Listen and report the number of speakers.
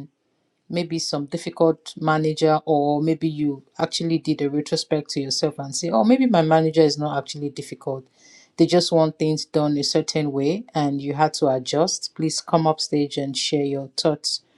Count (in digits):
1